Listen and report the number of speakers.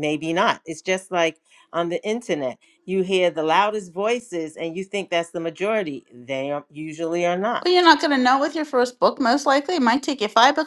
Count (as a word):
two